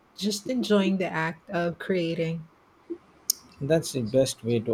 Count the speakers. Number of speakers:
2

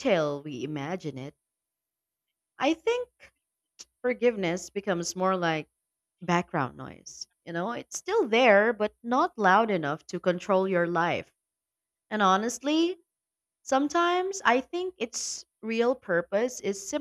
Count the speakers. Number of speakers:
1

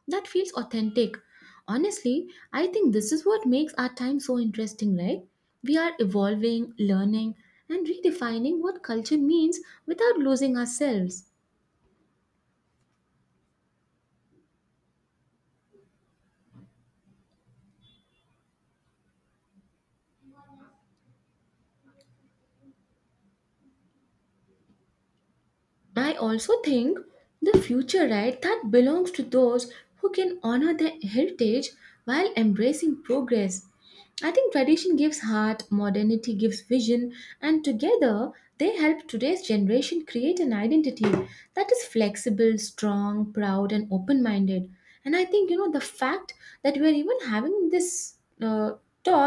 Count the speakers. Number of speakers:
1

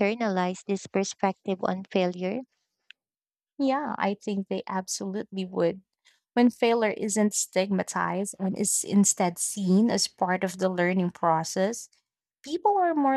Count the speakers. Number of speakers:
2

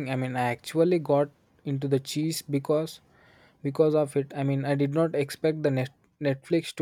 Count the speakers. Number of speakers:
1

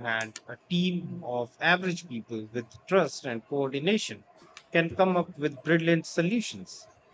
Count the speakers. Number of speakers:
1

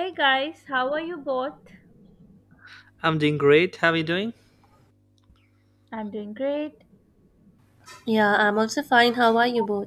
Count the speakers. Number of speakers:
3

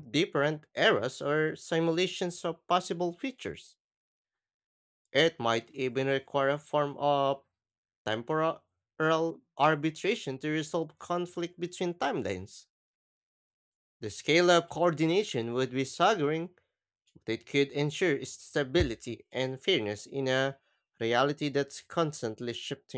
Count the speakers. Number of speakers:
1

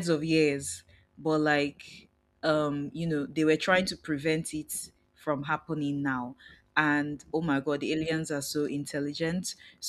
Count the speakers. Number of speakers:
1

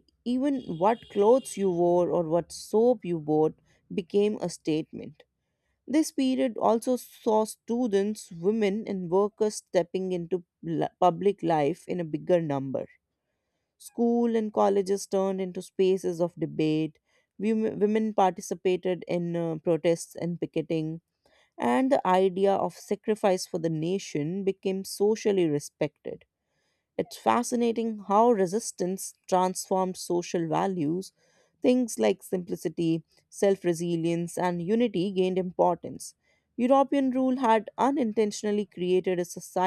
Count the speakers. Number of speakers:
1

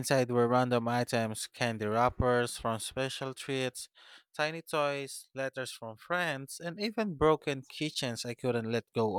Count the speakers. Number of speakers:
1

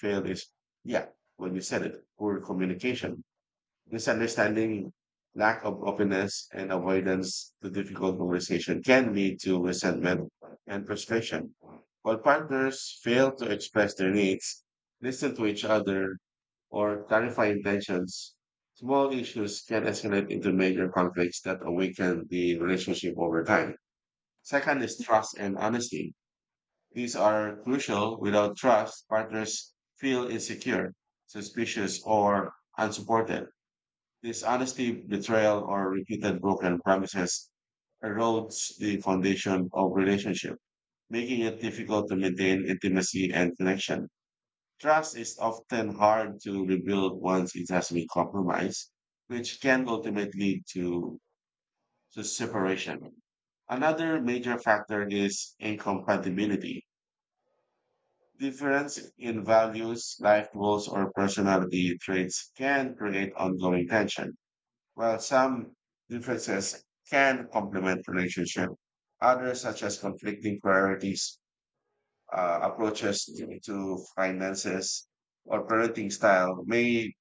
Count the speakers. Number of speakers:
1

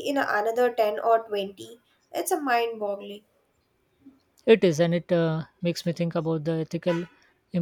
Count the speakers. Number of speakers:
2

